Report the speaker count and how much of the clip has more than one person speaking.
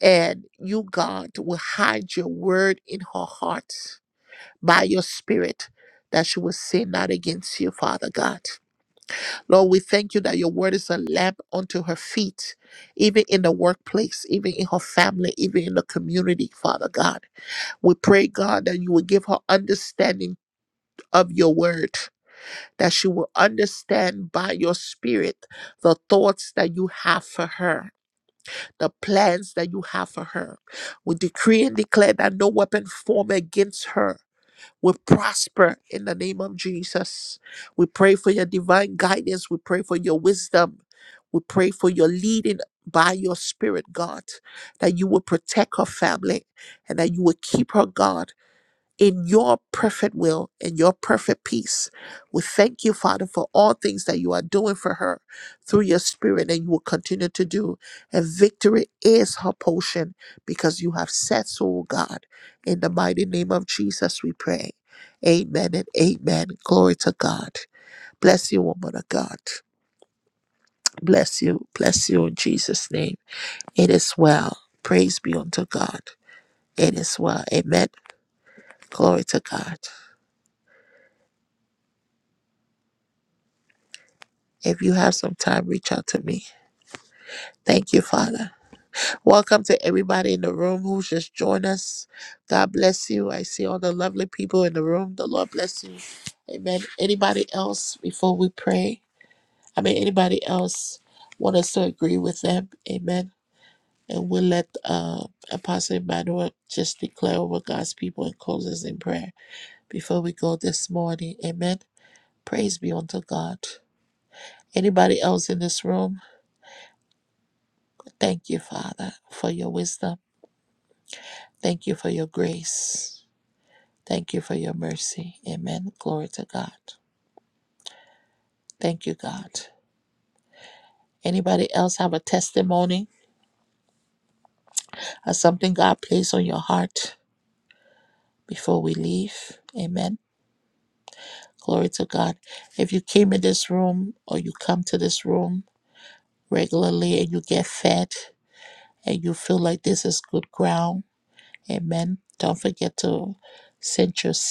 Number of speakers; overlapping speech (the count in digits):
1, no overlap